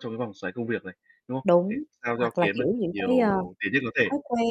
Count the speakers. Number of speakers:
two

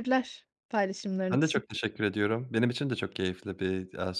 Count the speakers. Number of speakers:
two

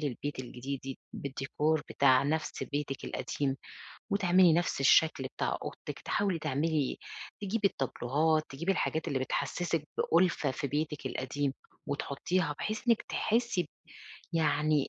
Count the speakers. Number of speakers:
one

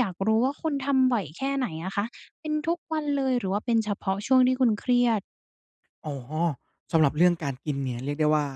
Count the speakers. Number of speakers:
two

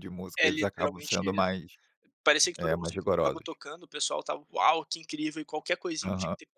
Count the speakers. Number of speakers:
two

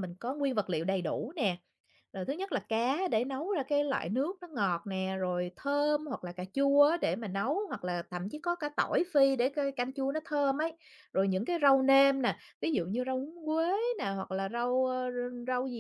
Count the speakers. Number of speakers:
one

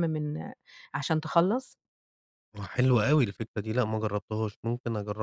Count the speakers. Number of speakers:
two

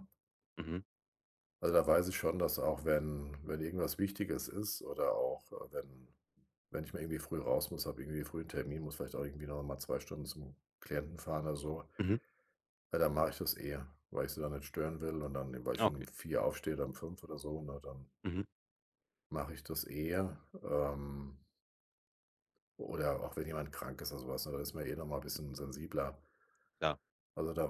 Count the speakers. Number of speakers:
two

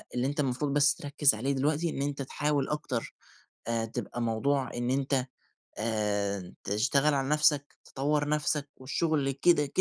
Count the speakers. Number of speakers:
one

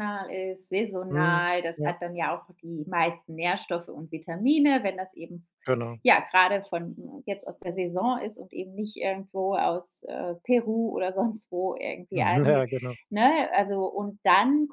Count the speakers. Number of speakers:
two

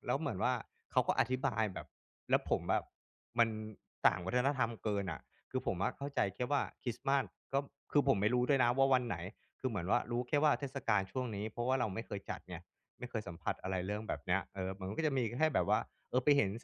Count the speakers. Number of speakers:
one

